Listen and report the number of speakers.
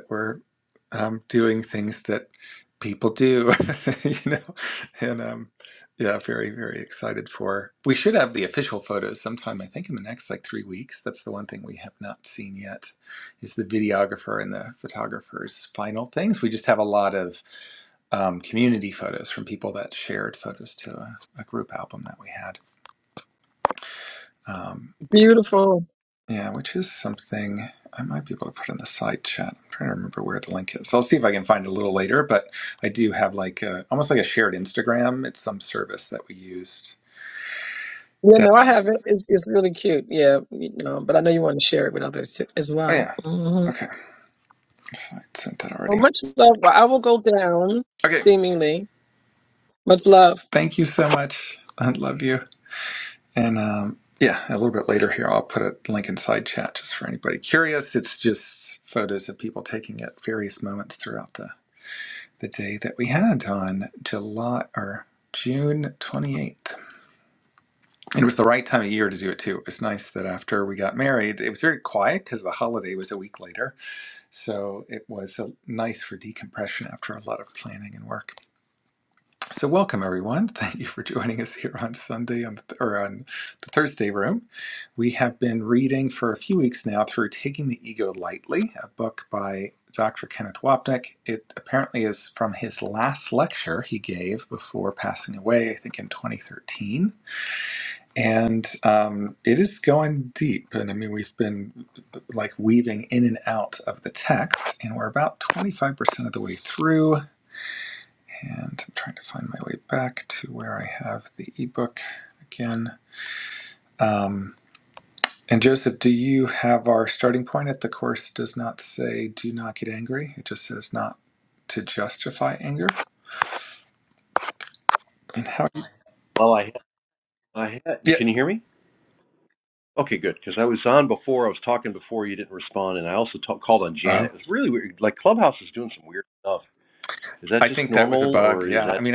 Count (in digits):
3